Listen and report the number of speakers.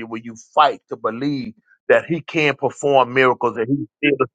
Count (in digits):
1